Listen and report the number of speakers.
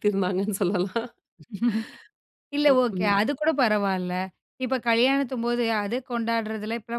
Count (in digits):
2